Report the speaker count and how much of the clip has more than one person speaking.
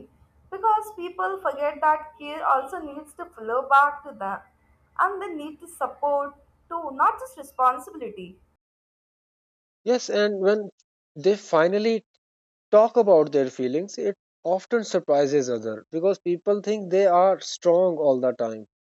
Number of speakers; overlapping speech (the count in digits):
2, no overlap